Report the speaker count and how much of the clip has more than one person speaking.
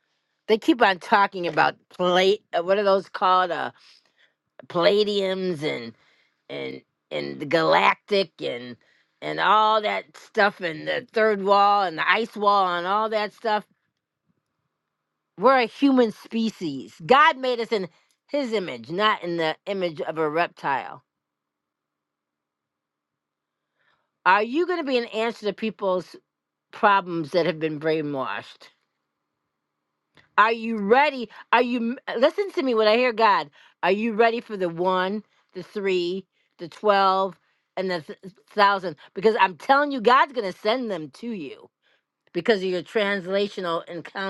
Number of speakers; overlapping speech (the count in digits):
1, no overlap